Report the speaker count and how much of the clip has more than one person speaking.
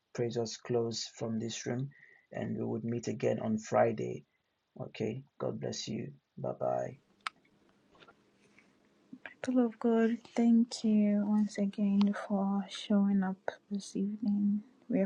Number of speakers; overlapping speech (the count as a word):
two, no overlap